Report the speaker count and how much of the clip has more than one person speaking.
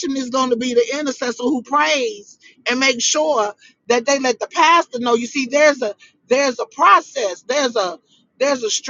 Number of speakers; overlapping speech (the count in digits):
1, no overlap